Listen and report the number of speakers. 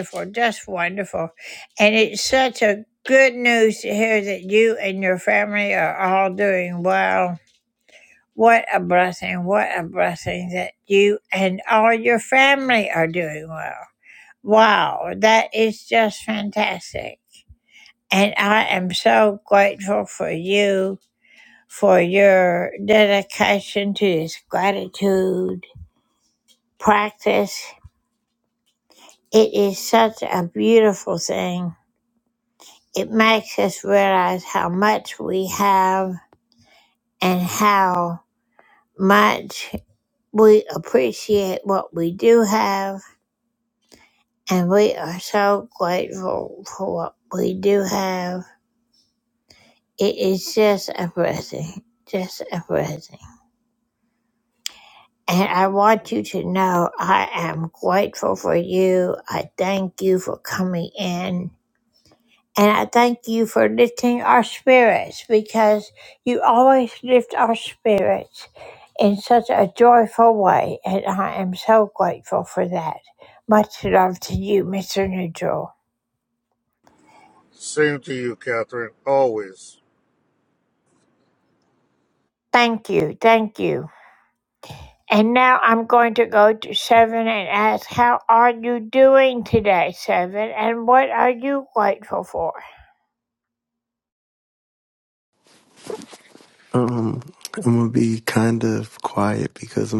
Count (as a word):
three